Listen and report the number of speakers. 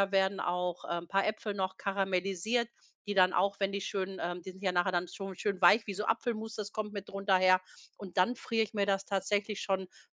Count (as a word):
one